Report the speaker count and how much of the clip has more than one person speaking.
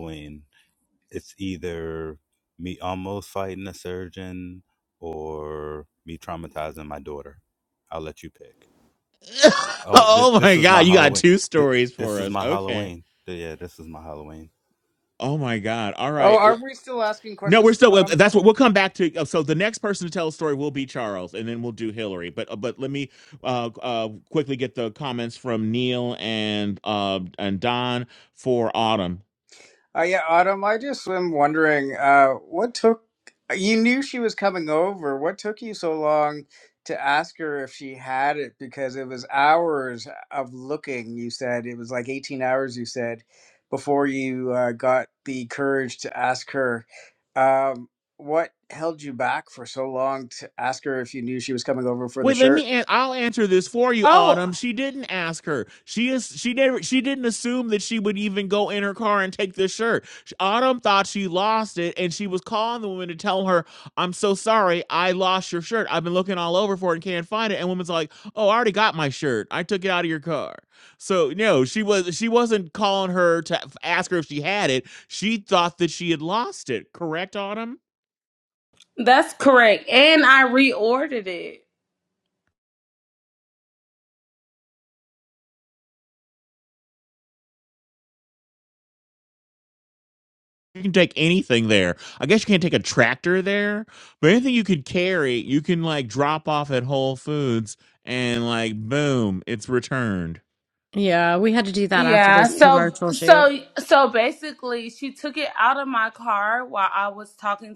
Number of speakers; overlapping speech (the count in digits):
5, about 6%